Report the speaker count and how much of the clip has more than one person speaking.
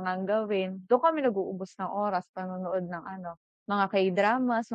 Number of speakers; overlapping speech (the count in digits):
1, no overlap